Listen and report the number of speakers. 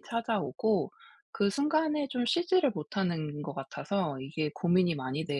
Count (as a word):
one